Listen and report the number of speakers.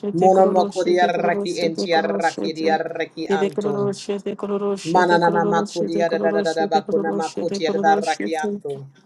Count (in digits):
2